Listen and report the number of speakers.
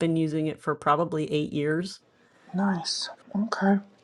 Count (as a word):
two